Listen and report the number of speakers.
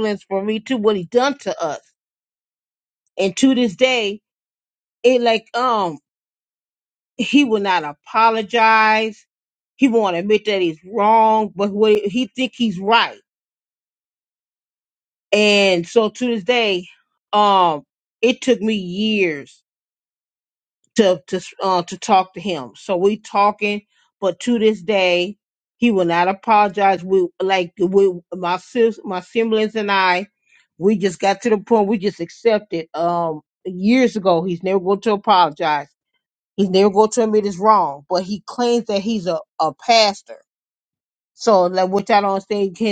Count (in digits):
1